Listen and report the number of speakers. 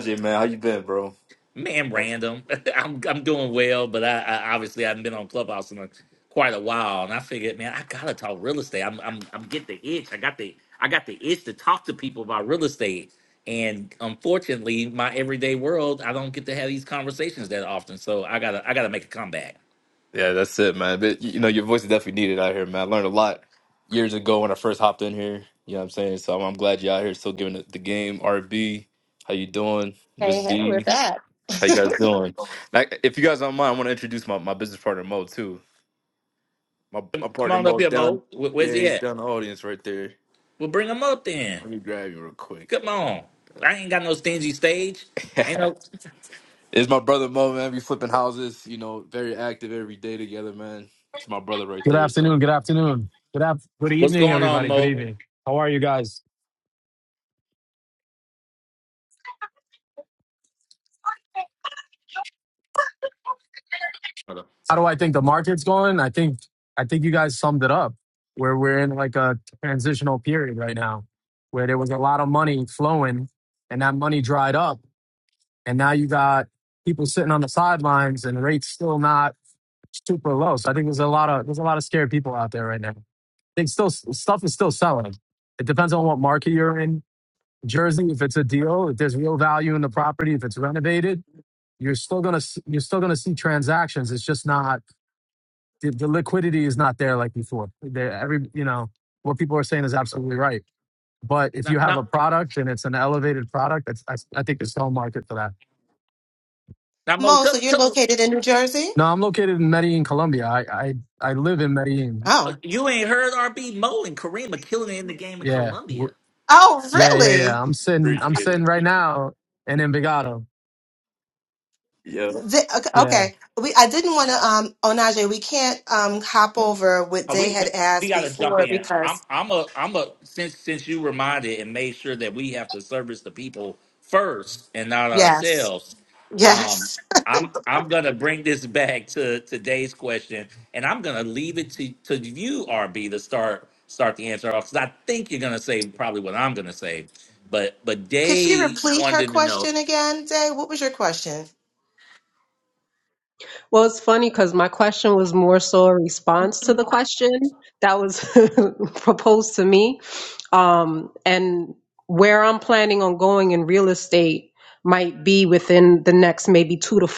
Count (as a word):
five